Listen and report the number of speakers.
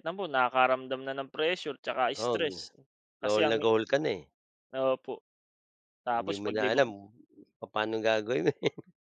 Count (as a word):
two